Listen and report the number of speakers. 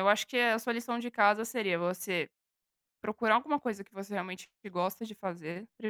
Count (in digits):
1